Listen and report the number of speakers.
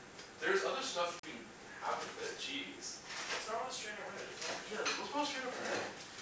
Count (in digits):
2